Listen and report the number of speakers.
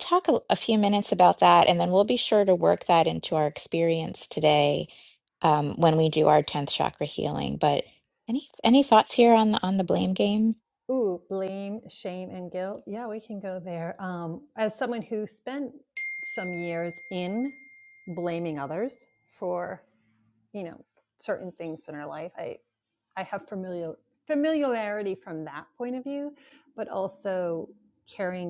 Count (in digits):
2